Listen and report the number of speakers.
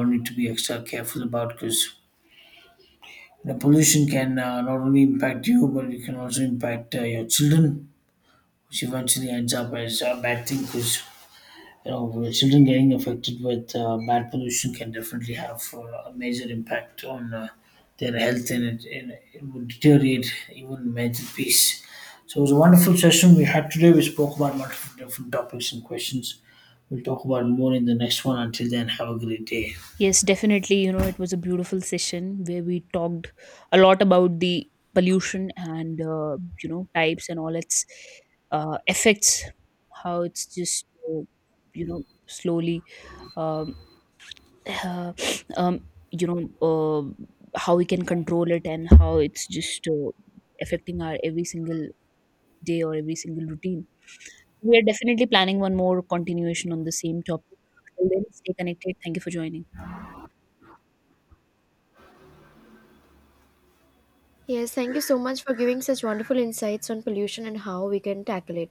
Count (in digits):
3